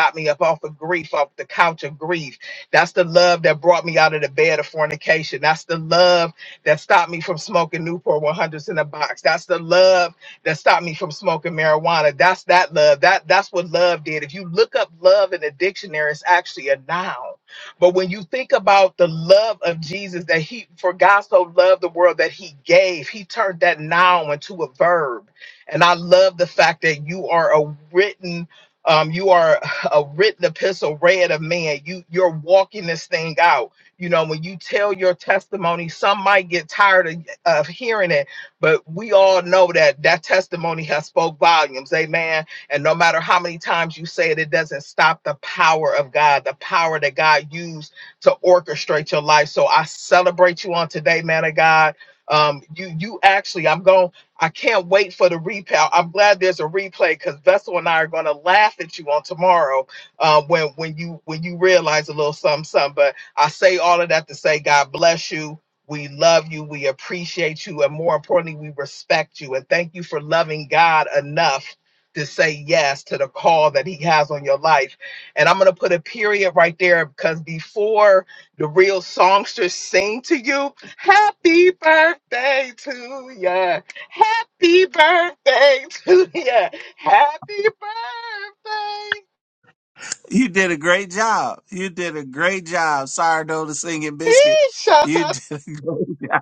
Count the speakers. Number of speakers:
2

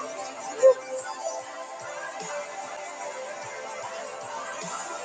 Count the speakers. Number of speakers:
0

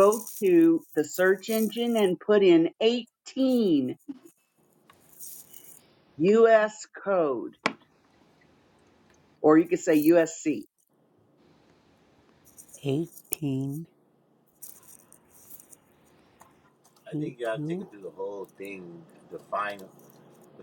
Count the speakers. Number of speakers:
3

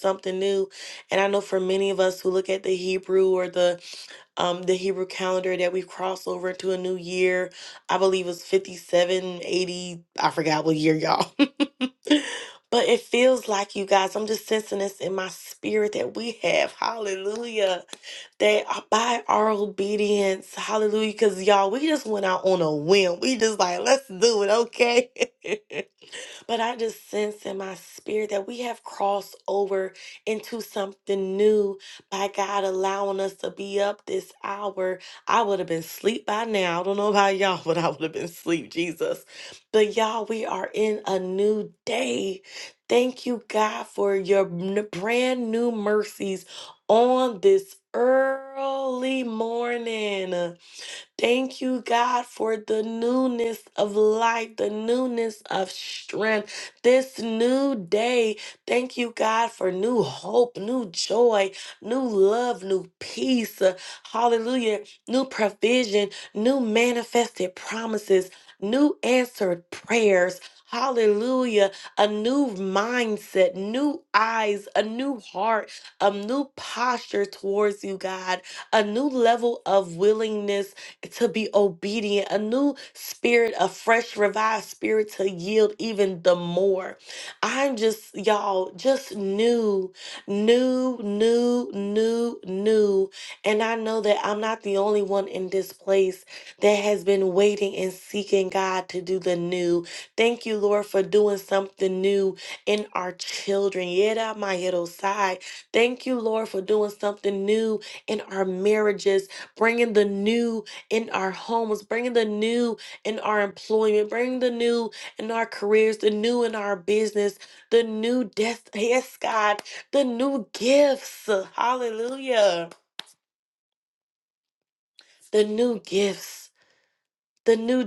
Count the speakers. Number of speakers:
1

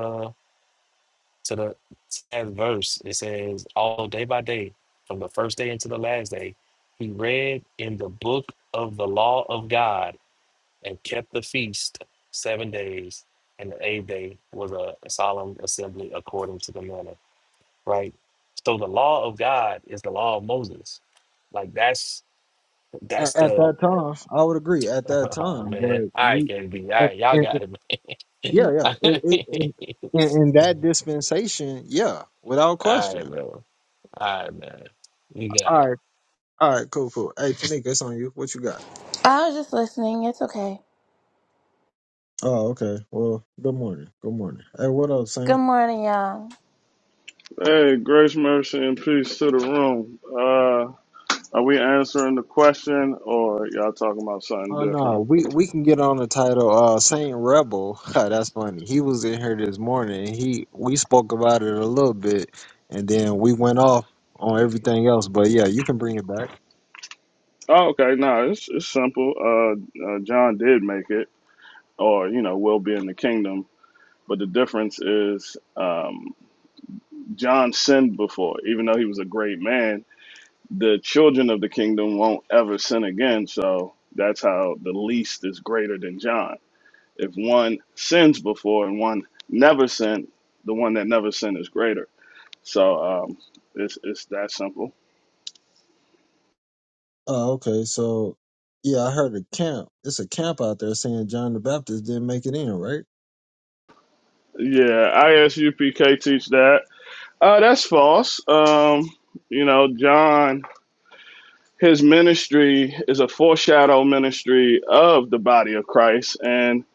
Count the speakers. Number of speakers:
4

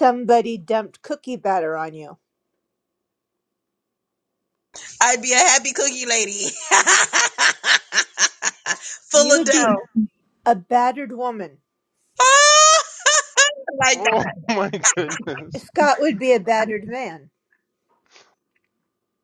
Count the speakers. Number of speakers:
3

